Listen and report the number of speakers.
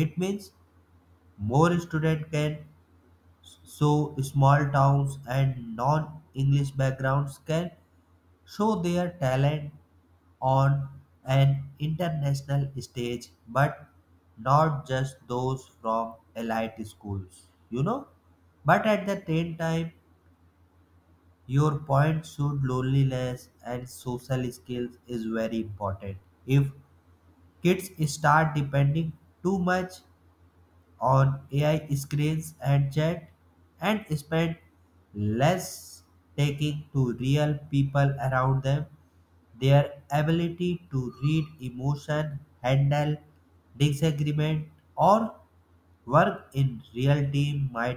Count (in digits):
1